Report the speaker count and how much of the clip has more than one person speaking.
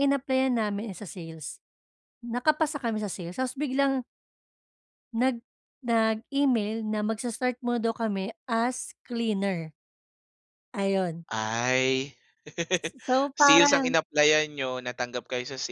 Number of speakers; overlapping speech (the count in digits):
2, about 4%